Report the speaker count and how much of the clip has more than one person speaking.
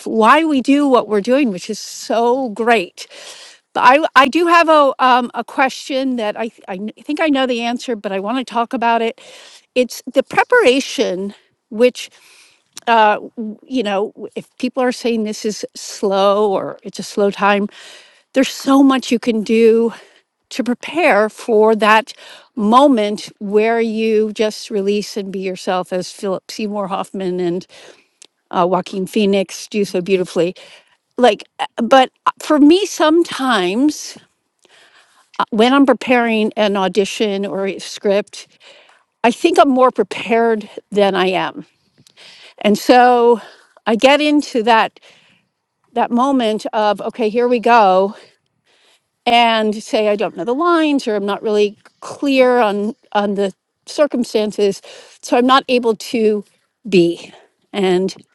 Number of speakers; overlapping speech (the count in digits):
1, no overlap